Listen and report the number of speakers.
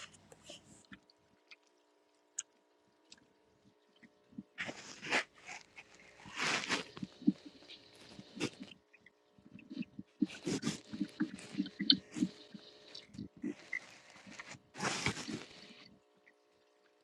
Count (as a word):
zero